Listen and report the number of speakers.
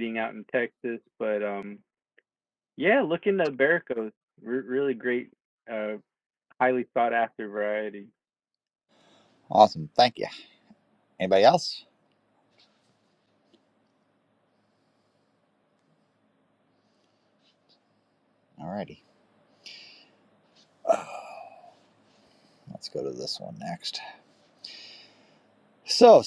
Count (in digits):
2